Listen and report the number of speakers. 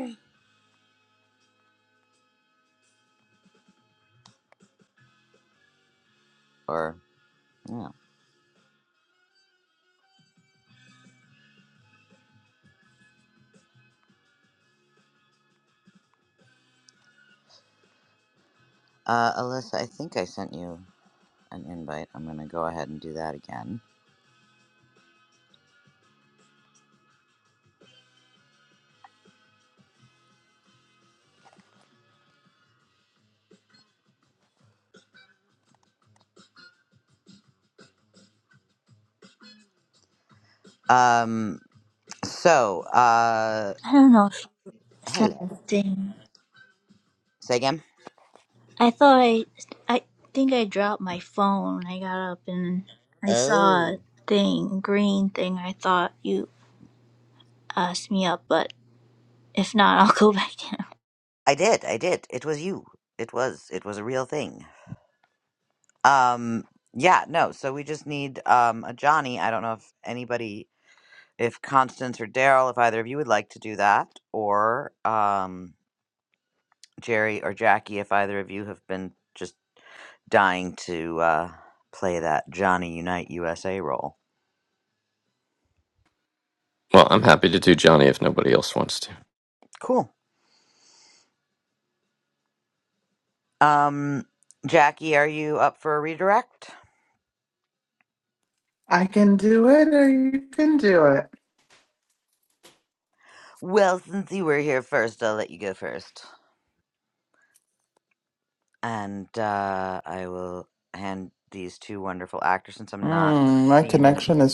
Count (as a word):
four